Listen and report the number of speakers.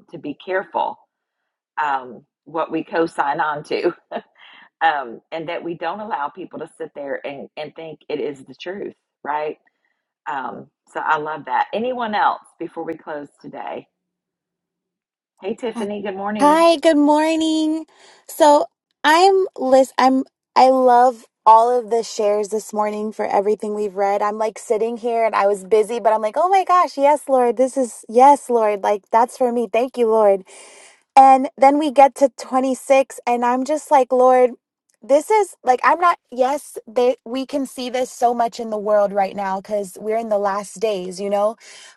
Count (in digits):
2